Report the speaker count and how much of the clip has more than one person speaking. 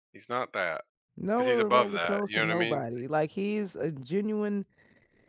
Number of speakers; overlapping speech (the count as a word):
two, about 28%